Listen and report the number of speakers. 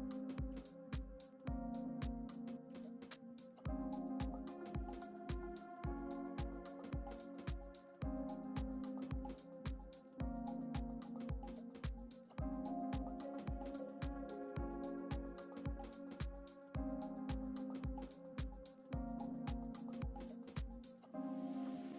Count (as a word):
zero